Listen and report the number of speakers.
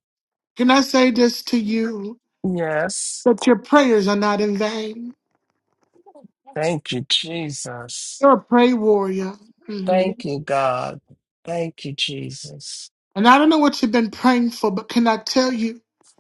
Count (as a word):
two